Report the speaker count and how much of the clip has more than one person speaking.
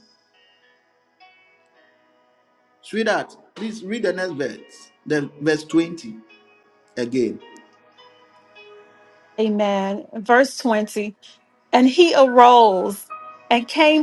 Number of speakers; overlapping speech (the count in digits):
2, no overlap